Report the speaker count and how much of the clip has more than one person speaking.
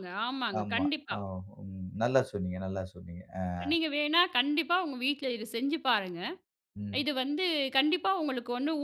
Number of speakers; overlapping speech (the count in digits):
2, about 7%